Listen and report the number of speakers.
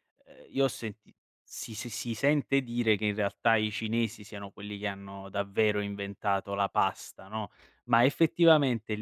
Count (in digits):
1